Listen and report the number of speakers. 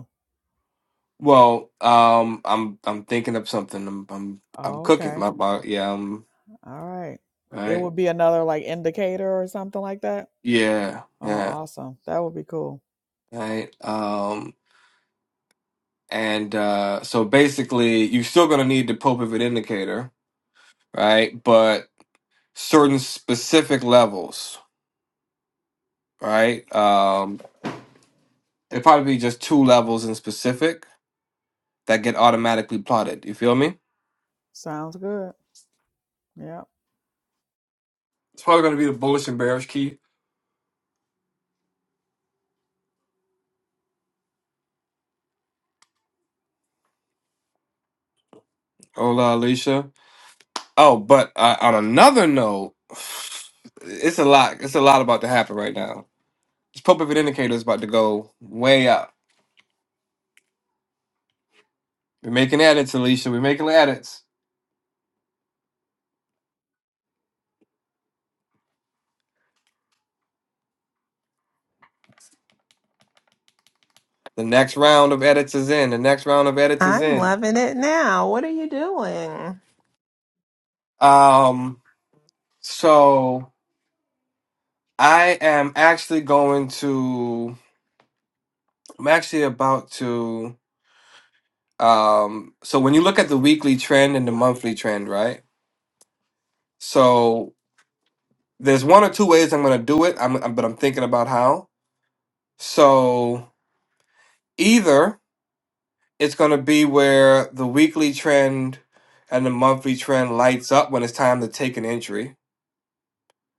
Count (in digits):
3